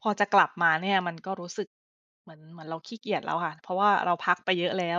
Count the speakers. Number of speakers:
one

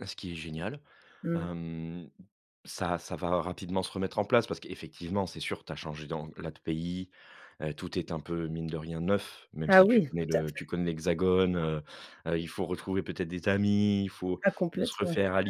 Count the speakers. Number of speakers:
two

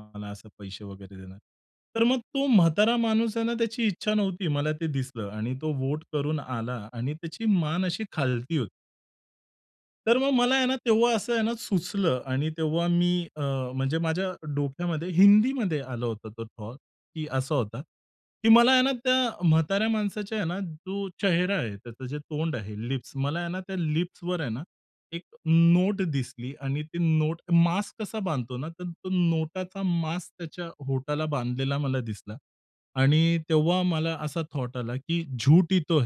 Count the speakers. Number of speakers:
one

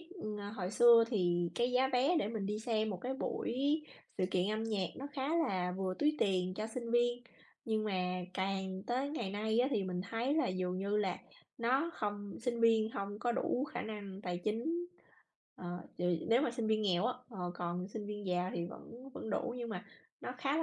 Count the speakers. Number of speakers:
one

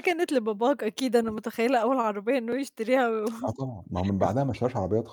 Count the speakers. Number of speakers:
two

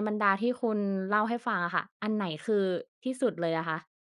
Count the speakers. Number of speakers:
one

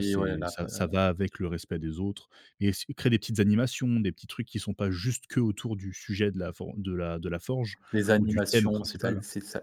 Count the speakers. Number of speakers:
two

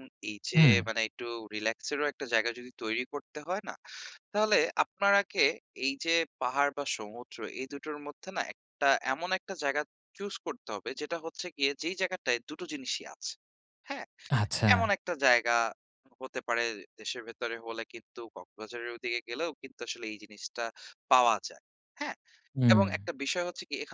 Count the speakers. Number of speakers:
two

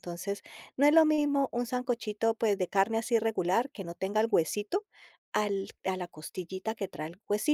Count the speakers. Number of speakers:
one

